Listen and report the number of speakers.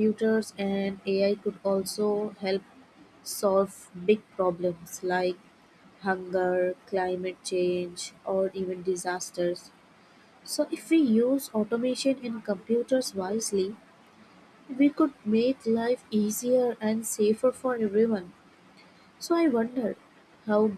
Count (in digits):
1